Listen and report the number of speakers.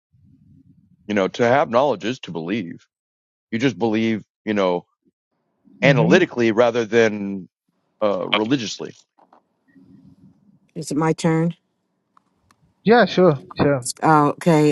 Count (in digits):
3